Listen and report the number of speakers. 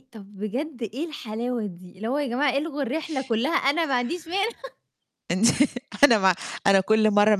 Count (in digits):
2